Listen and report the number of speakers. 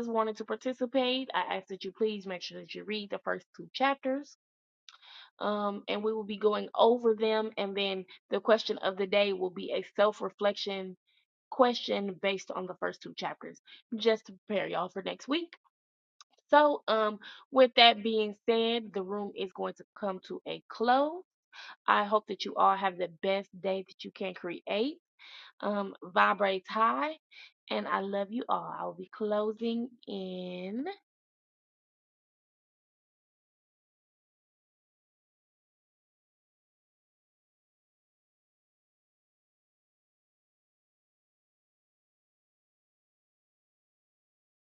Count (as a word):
one